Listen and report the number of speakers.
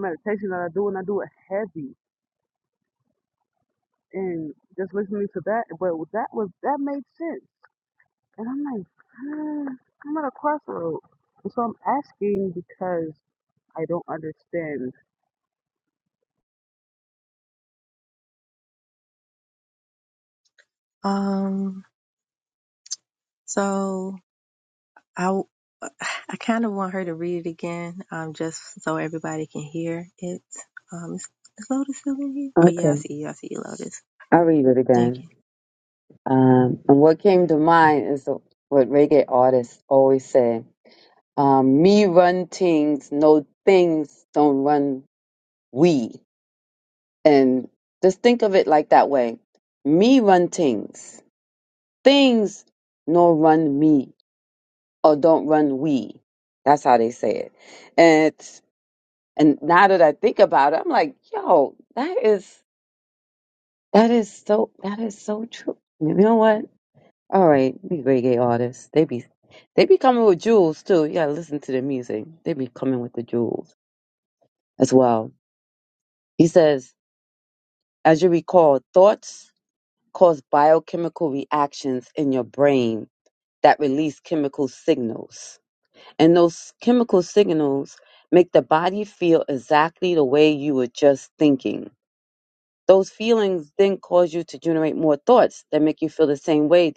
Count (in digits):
3